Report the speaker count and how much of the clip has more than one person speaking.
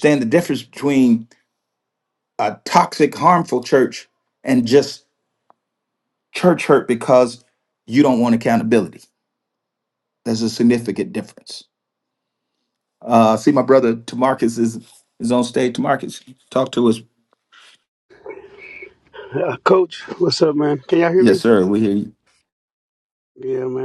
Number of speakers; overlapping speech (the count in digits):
2, about 1%